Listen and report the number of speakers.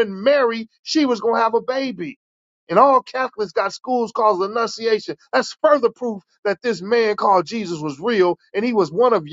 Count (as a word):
one